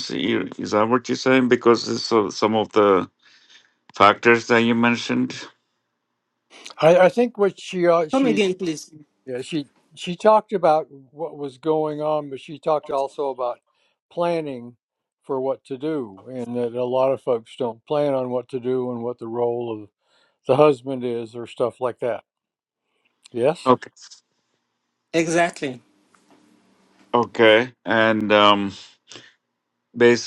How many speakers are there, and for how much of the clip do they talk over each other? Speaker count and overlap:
3, about 1%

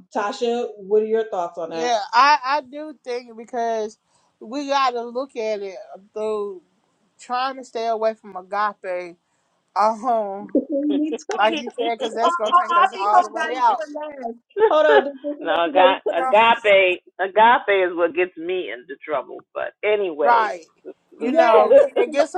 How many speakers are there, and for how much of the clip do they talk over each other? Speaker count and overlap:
3, about 19%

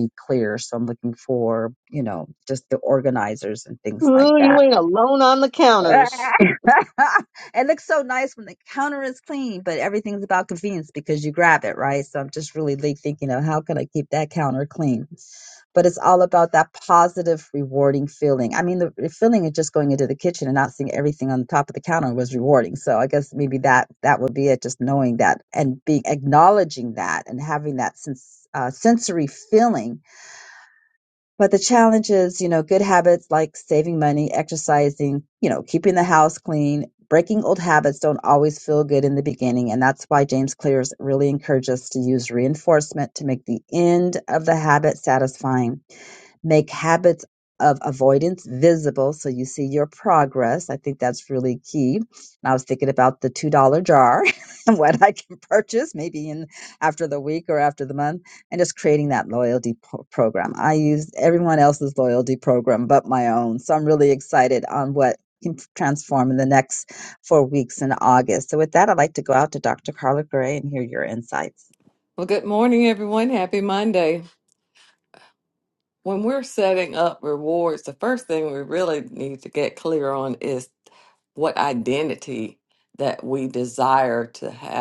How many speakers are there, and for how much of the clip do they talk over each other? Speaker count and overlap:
3, about 1%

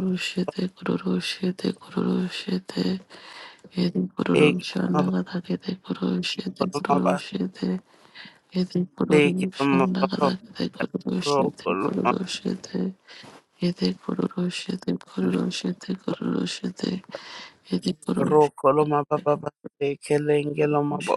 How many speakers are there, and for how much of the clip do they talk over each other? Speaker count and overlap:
2, about 21%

